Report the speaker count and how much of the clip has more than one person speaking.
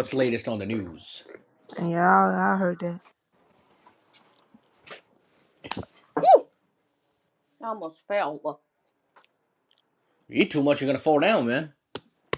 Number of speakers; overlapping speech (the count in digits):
3, no overlap